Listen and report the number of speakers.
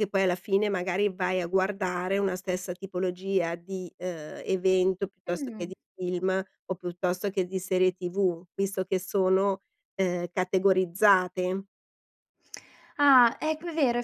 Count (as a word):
two